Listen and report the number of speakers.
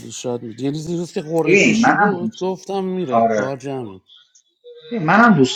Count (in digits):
2